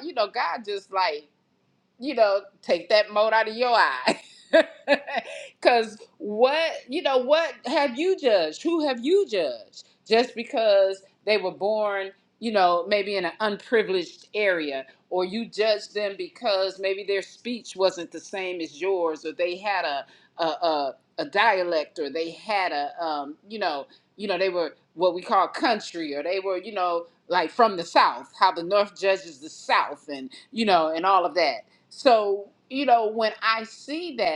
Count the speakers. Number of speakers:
one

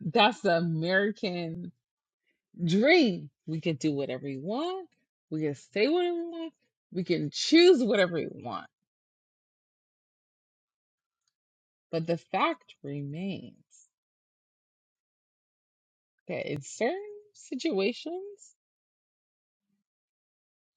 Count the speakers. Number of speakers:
one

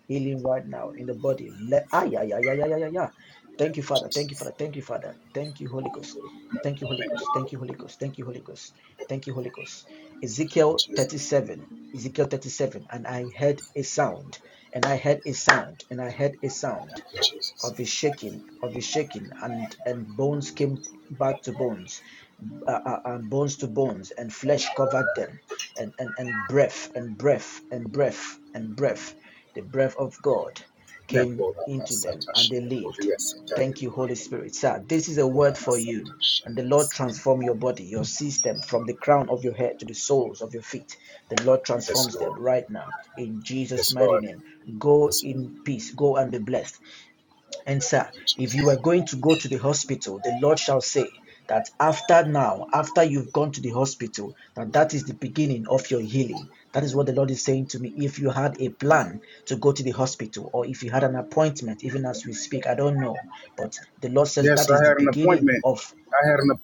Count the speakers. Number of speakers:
two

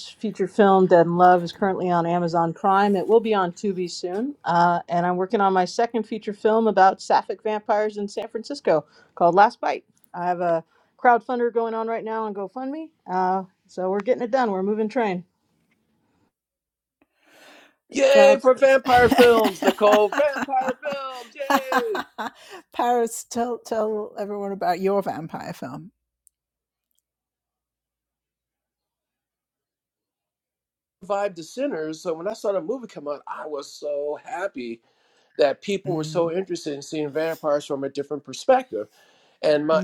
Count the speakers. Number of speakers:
three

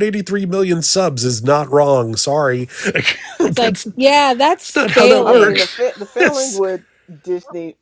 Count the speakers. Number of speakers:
three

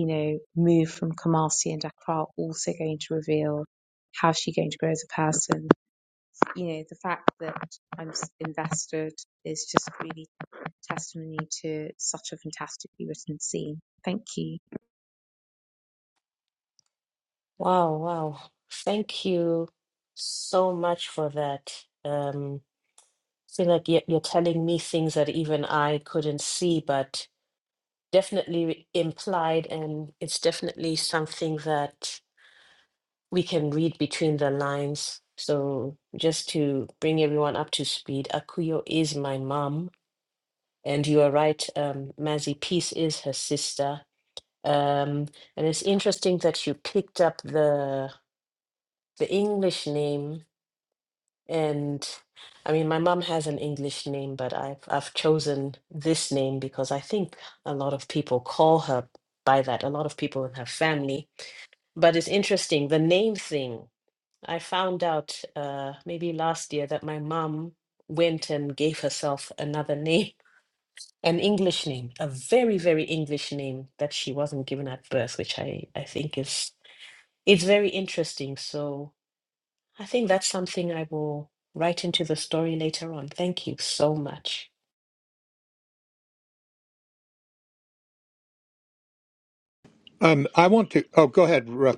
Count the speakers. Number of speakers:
three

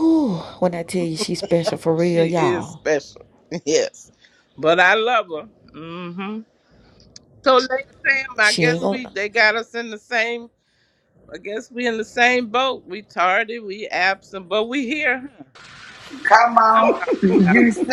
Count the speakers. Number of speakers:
three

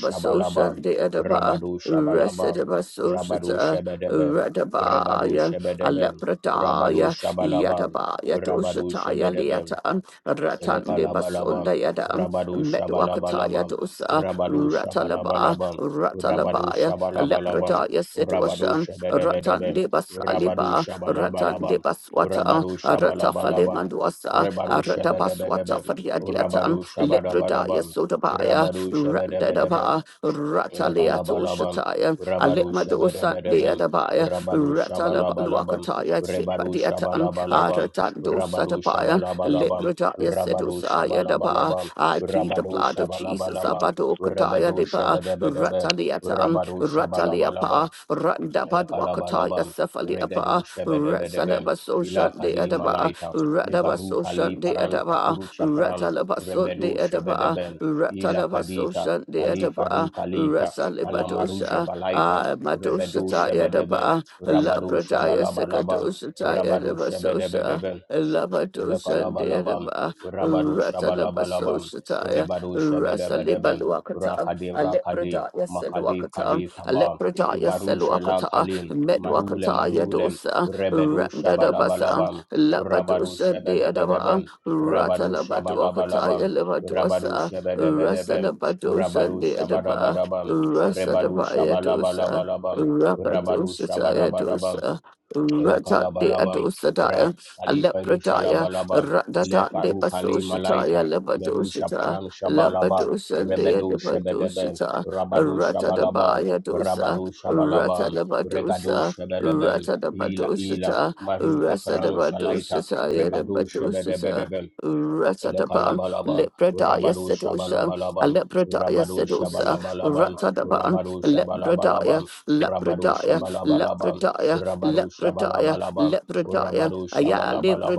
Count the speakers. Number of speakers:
two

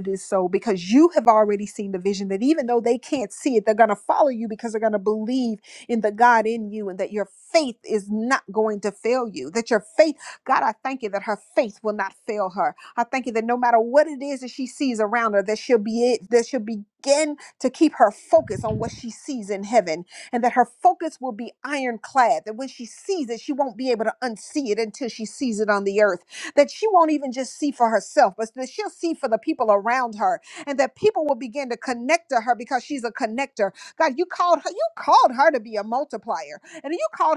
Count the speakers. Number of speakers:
one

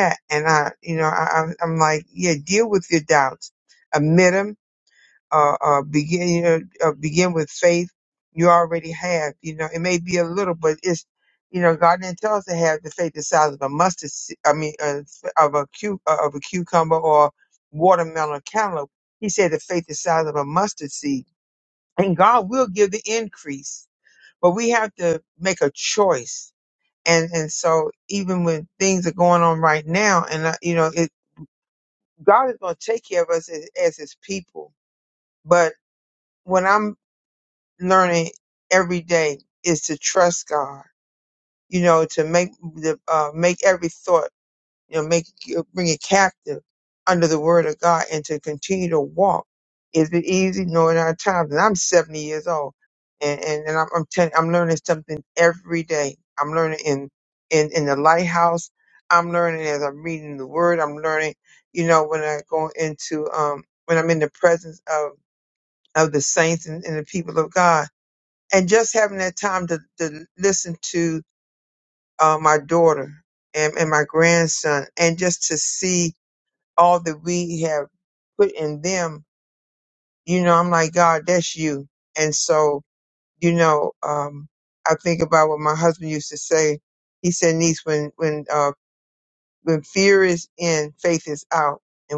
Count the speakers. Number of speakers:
one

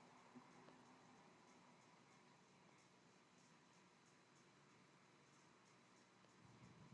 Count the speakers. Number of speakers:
zero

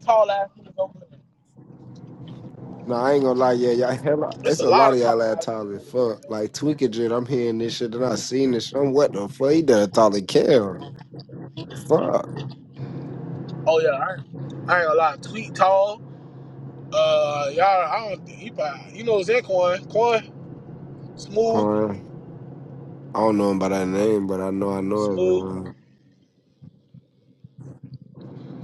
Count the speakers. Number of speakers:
two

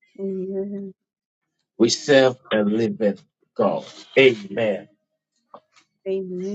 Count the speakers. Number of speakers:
two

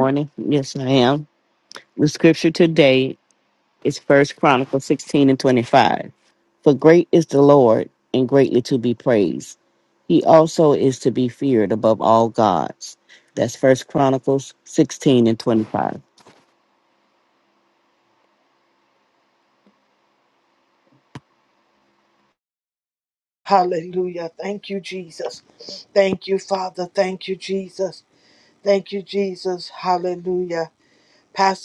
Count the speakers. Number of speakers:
two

